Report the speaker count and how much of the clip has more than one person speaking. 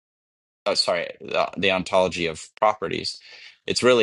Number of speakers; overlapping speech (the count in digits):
1, no overlap